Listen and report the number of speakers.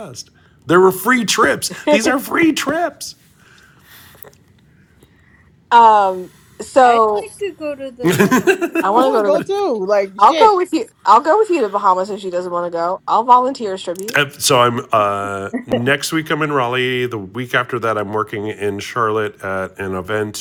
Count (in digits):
4